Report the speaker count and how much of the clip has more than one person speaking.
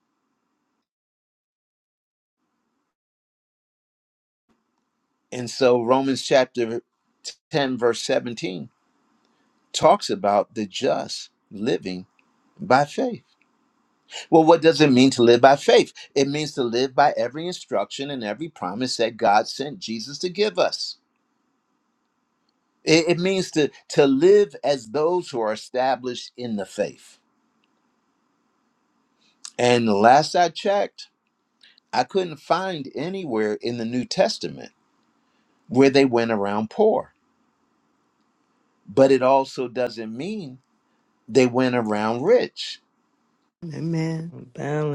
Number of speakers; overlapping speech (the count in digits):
2, no overlap